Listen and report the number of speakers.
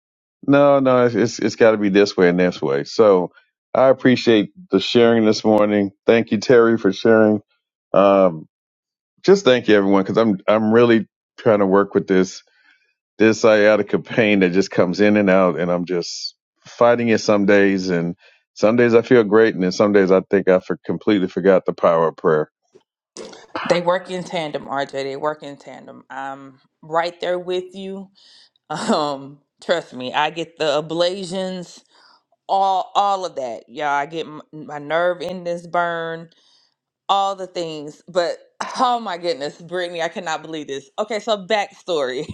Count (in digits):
2